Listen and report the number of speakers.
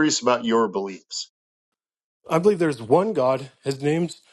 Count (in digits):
2